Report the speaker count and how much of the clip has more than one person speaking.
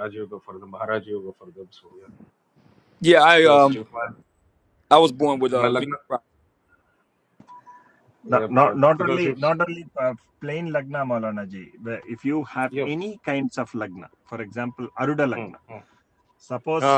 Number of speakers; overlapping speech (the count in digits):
3, about 13%